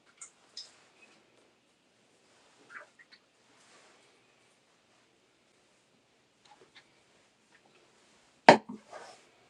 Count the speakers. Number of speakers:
zero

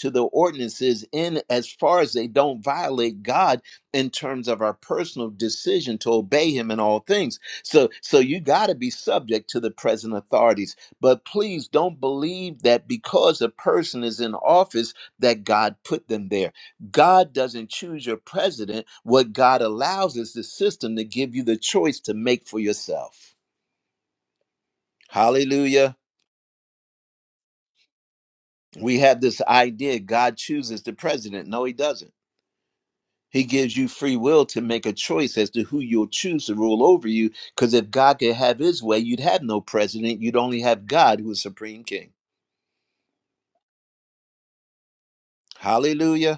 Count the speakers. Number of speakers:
one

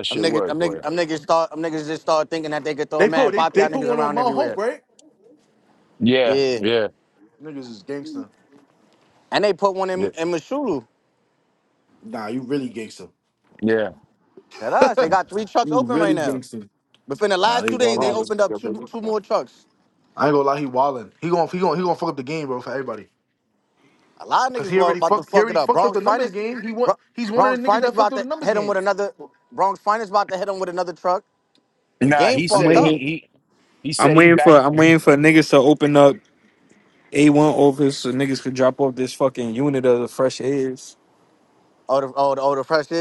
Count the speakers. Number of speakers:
four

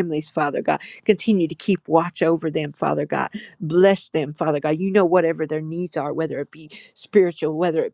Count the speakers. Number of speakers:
one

